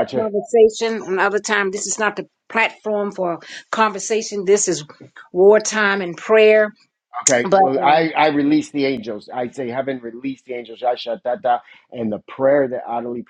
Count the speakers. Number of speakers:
2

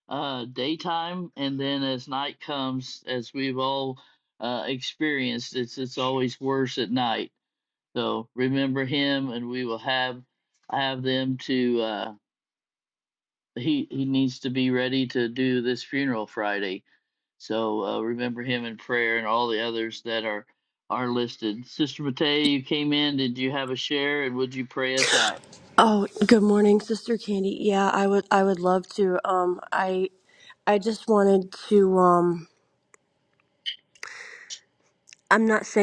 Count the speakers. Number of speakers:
2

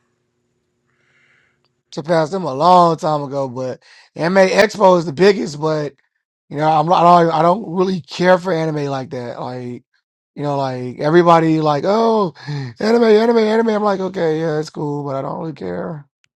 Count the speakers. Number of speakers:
1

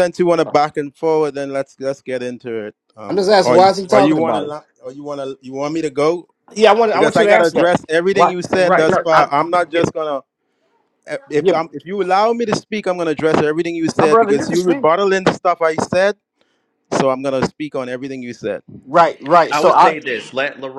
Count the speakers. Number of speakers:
3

